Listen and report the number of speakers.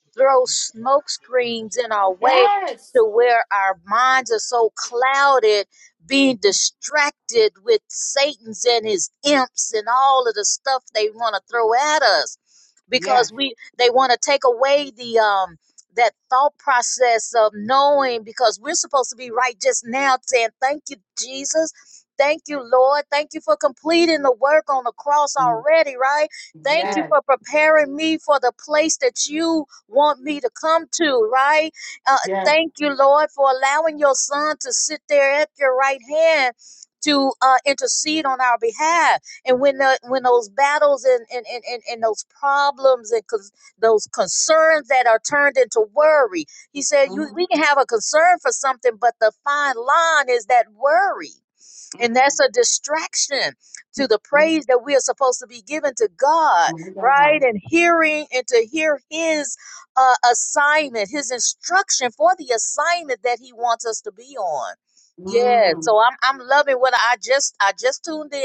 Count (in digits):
2